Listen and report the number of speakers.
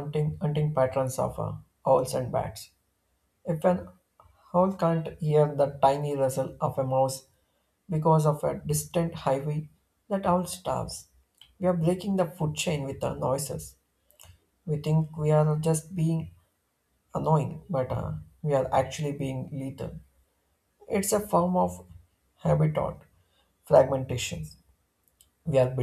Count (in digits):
1